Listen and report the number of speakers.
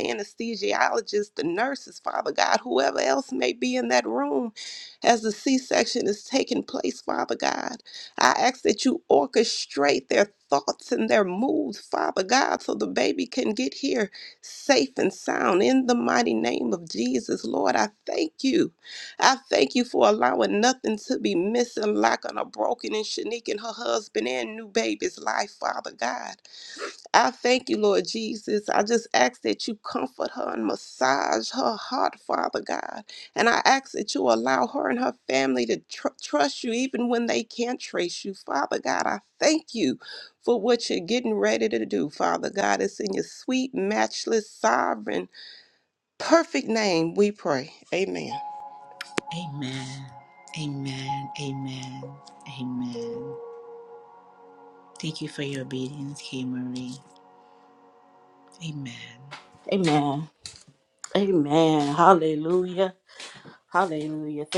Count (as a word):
three